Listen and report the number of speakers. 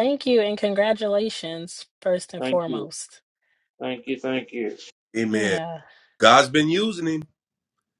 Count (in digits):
3